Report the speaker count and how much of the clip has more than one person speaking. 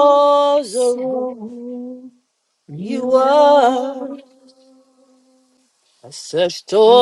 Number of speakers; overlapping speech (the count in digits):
2, about 27%